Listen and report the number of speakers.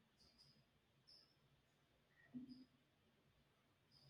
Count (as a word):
zero